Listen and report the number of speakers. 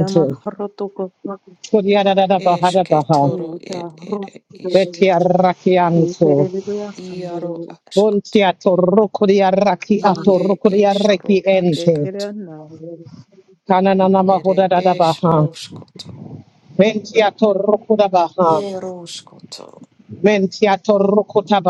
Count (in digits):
3